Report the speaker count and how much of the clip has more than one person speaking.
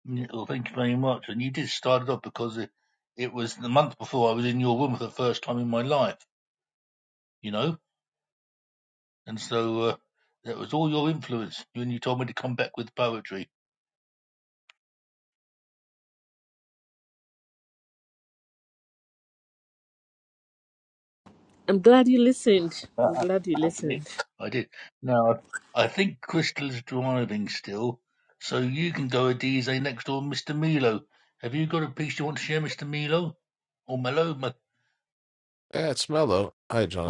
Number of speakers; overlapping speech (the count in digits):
3, about 1%